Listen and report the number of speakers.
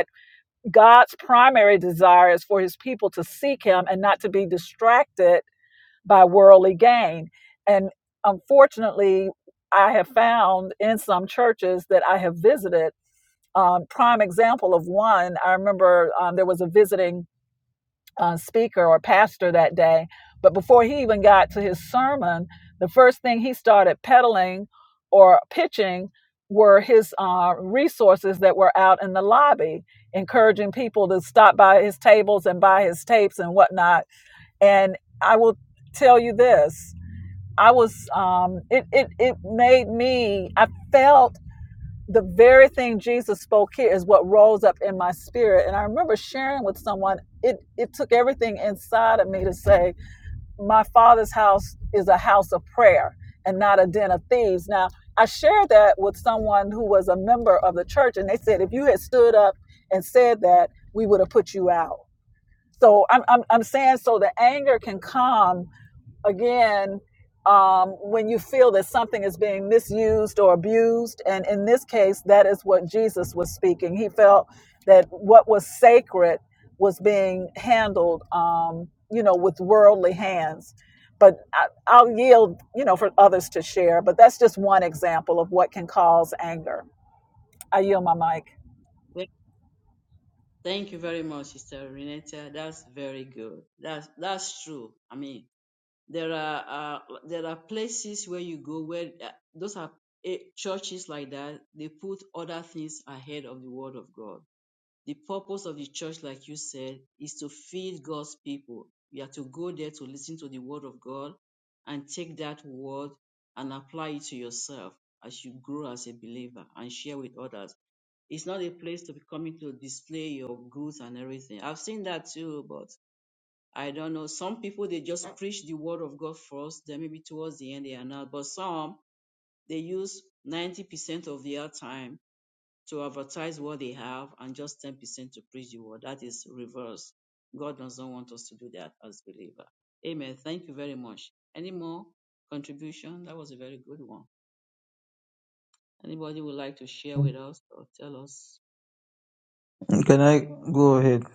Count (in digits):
3